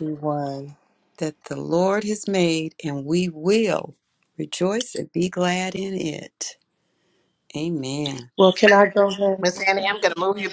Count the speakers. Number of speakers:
three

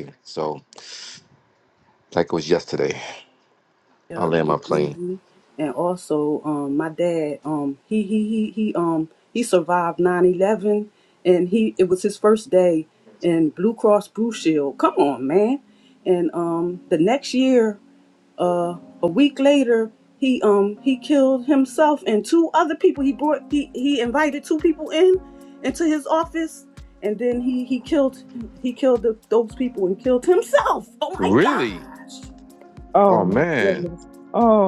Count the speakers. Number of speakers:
three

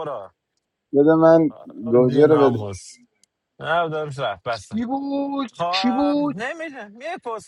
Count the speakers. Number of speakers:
three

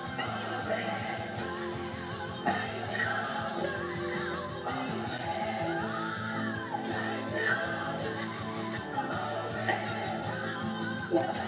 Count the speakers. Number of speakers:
zero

